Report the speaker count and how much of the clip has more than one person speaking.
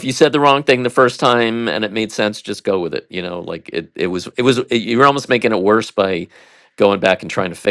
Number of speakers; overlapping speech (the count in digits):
1, no overlap